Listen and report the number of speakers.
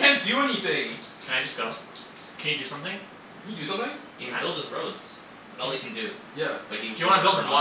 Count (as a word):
three